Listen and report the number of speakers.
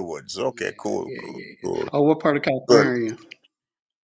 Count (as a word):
two